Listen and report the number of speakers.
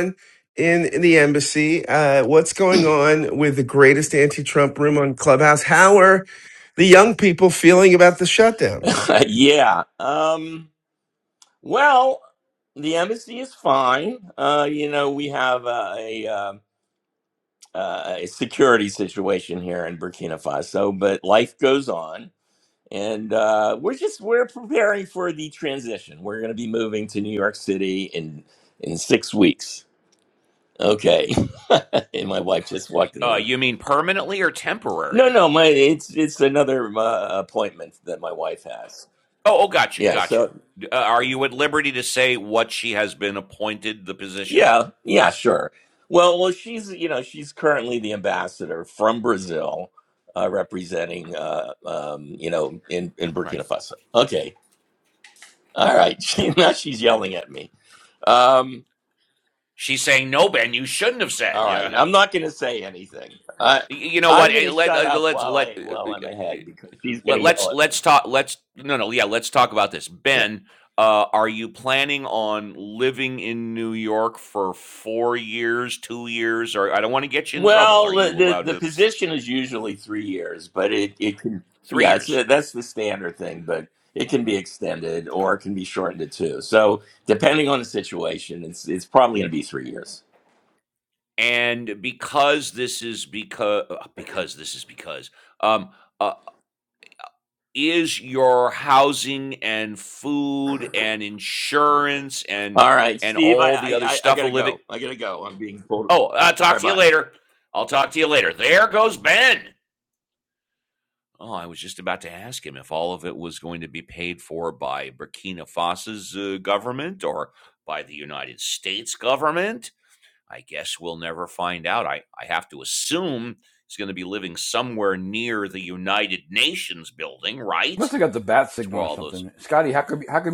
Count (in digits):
4